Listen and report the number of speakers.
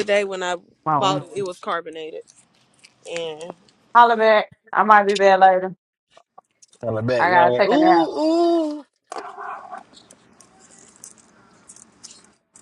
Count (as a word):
three